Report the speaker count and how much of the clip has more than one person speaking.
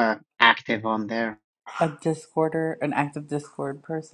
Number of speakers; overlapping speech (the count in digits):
2, no overlap